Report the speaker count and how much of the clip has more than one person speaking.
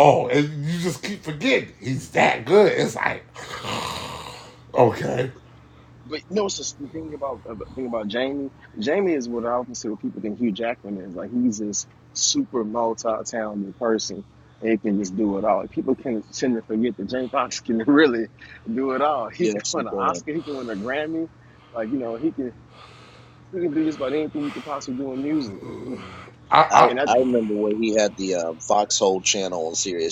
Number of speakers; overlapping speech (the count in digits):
3, about 4%